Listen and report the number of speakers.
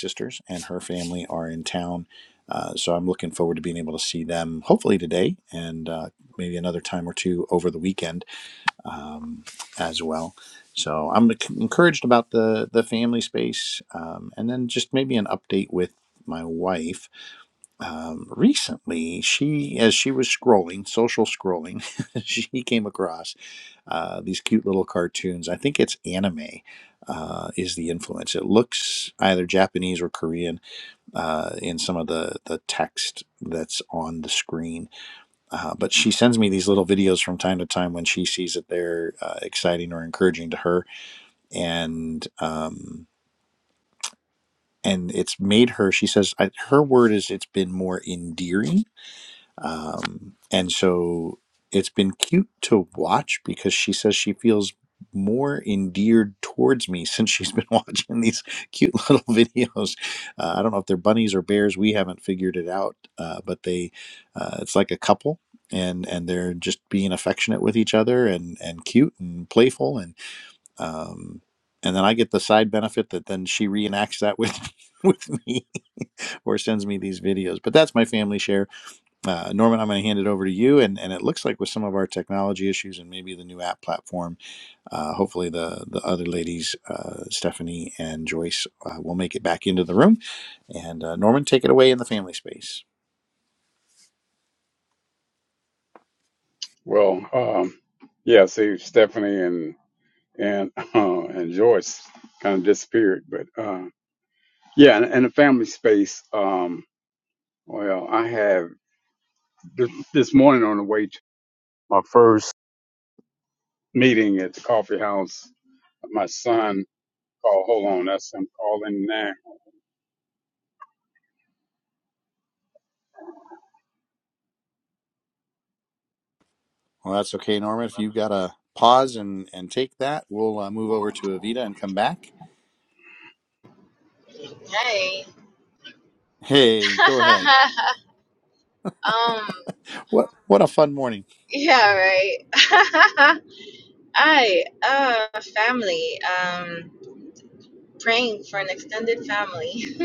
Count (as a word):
three